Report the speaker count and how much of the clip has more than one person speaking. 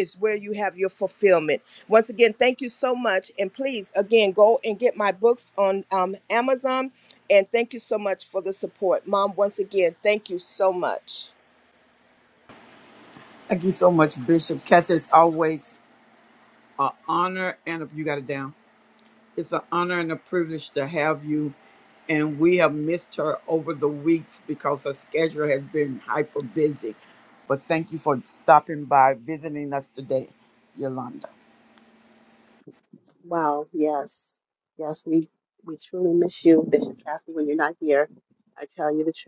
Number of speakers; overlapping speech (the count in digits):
3, no overlap